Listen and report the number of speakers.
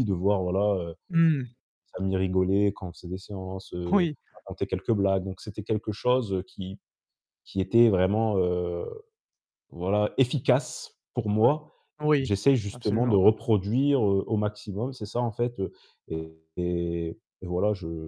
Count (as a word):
two